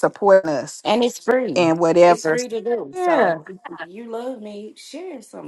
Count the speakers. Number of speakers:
2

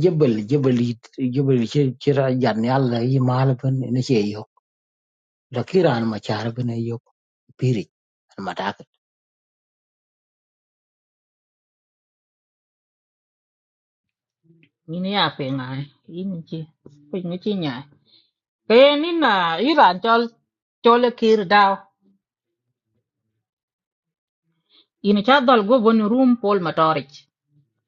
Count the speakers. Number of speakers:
2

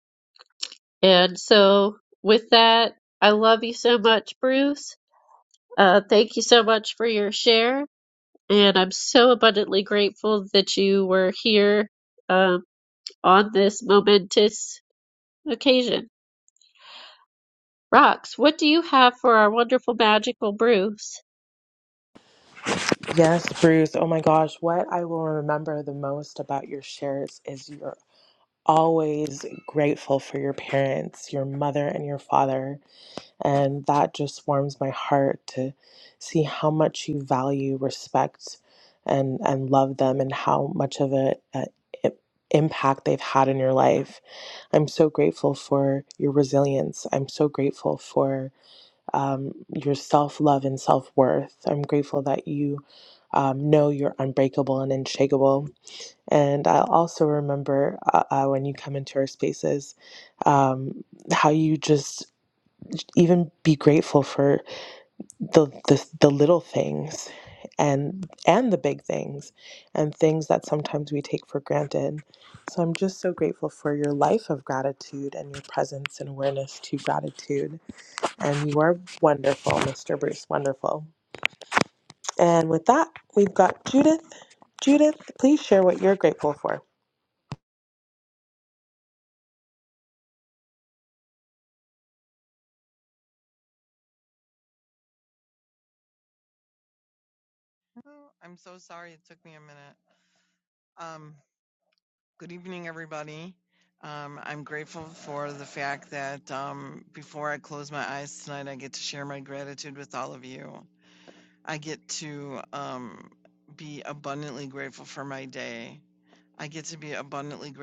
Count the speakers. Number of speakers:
3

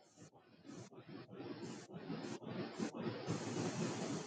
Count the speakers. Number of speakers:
0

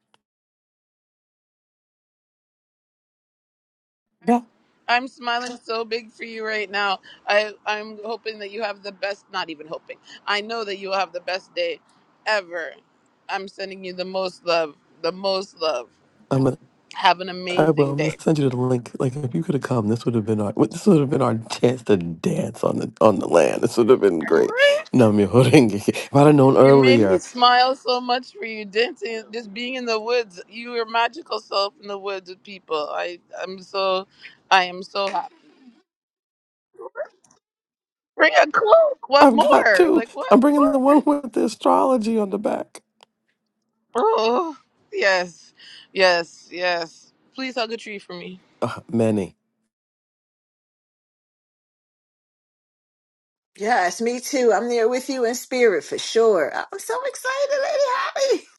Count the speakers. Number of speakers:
3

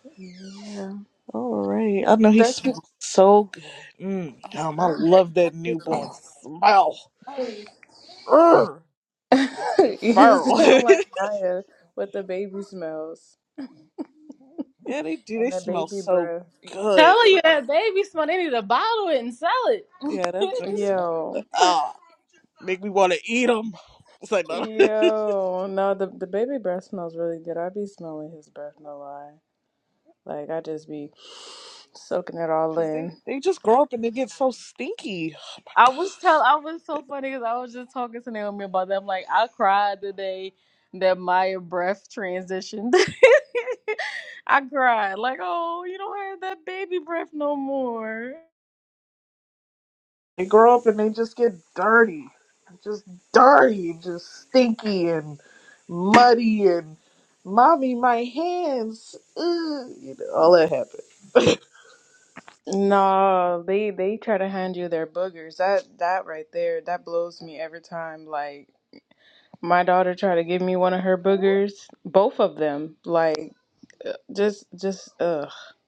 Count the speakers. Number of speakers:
3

